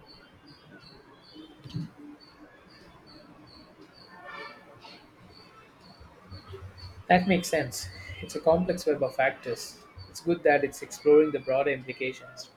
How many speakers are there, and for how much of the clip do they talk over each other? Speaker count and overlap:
1, no overlap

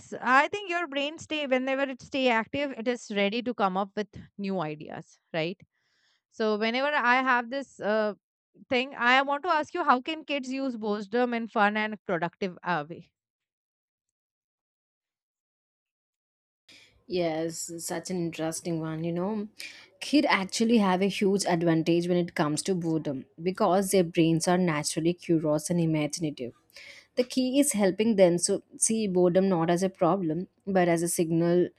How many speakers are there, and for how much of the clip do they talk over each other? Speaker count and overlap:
2, no overlap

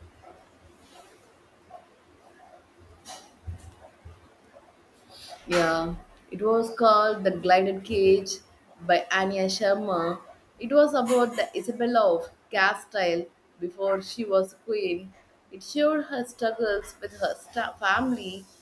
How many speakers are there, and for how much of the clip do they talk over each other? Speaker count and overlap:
1, no overlap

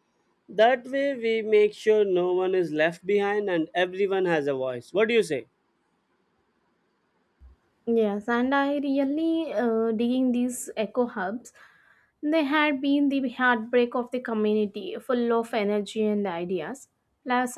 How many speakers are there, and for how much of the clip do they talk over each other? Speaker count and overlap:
2, no overlap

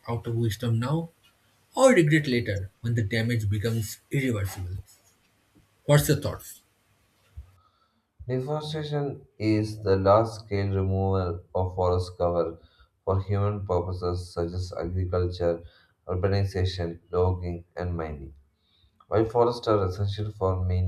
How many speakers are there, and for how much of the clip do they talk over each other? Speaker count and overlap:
2, no overlap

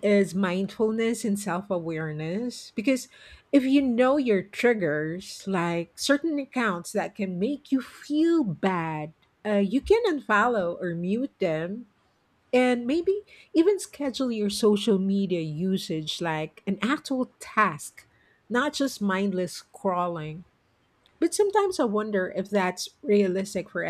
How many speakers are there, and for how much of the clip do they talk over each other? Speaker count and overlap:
1, no overlap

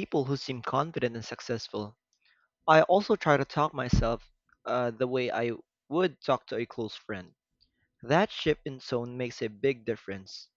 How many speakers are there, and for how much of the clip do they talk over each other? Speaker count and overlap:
1, no overlap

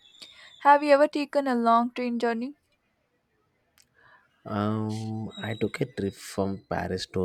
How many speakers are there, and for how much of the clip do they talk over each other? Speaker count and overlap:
2, no overlap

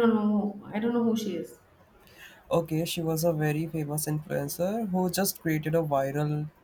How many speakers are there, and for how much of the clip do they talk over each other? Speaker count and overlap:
2, no overlap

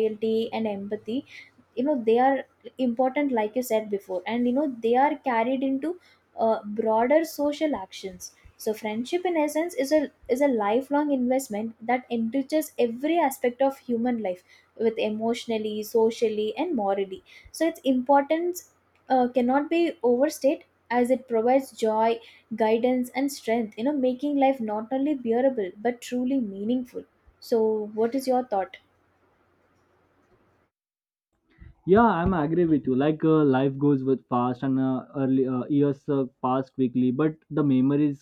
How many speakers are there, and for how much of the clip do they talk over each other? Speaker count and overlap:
2, no overlap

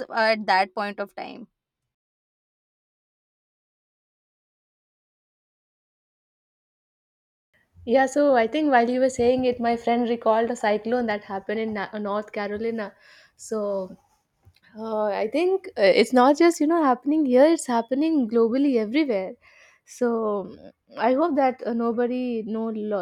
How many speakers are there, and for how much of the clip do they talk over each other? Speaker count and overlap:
2, no overlap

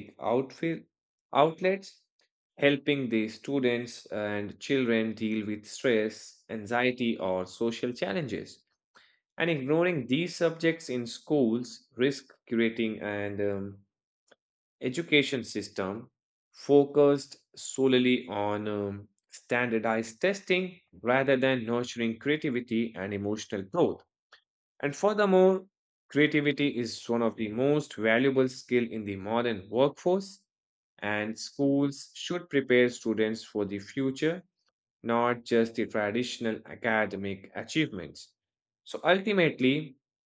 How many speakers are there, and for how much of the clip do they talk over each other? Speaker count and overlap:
1, no overlap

